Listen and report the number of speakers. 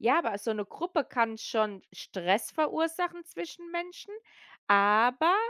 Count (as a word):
one